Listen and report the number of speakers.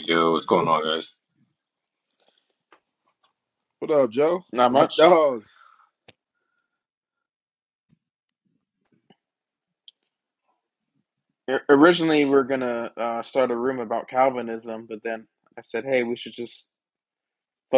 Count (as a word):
three